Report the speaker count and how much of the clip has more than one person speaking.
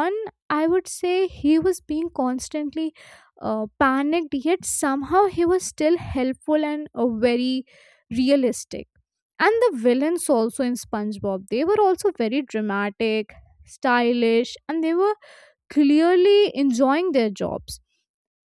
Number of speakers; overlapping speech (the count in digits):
1, no overlap